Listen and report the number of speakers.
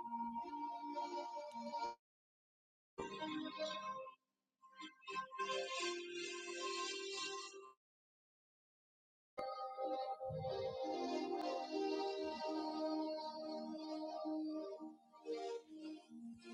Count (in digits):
0